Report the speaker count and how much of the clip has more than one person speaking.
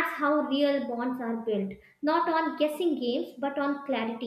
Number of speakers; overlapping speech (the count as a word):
one, no overlap